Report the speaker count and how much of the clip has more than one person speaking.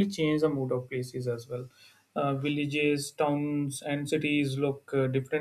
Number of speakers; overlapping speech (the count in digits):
1, no overlap